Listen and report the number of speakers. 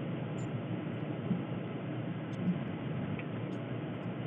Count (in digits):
0